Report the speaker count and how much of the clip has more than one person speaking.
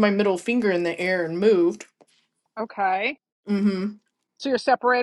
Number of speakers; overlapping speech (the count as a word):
two, no overlap